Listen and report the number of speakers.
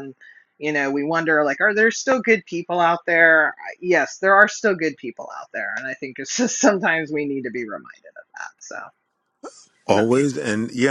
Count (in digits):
2